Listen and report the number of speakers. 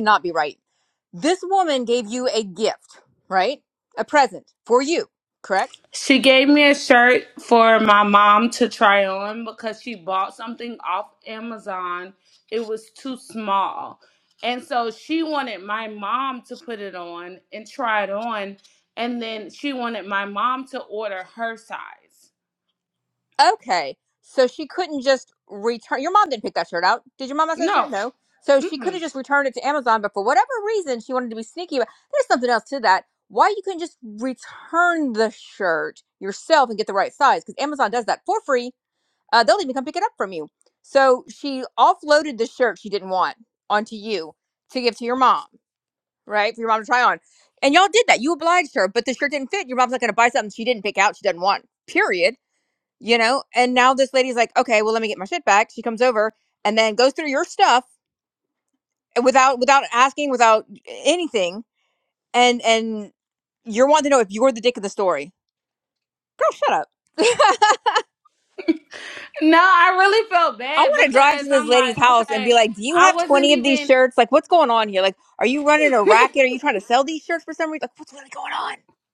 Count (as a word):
two